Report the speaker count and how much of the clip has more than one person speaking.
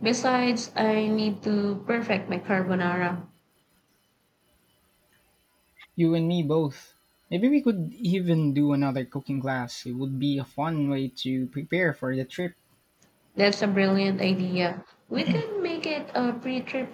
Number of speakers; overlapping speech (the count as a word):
two, no overlap